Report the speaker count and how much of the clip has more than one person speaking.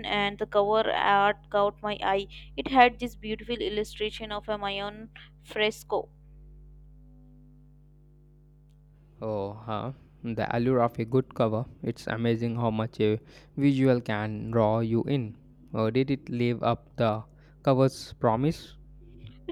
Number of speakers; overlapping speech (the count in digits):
2, no overlap